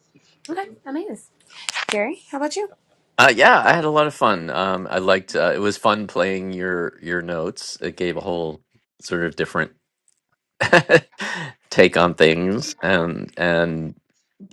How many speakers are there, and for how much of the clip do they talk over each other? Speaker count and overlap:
2, no overlap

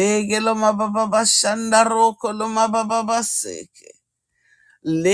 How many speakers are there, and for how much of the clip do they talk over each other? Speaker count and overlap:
1, no overlap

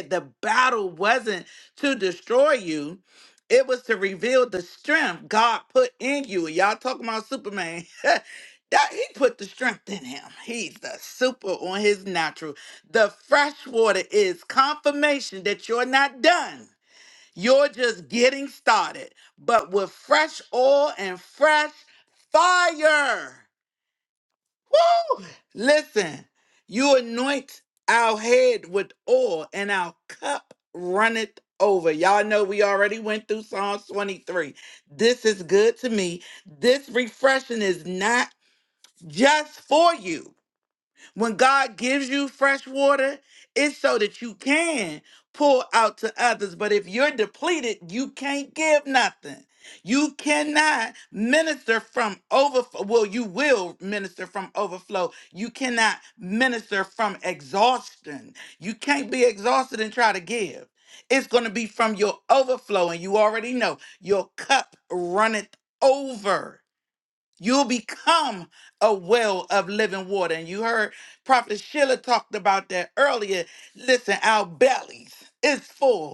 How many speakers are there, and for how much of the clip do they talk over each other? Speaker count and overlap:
1, no overlap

